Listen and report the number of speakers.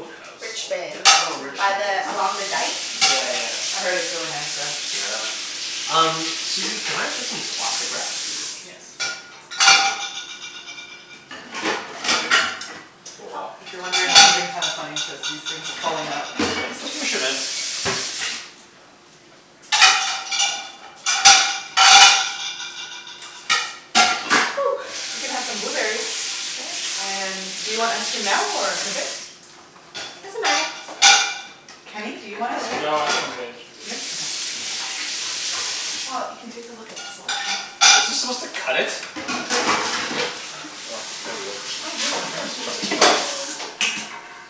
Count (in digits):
4